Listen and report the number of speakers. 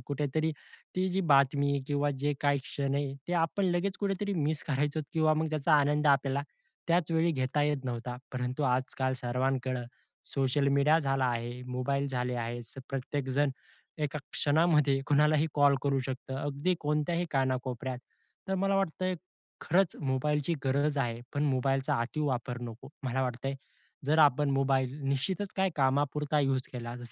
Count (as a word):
one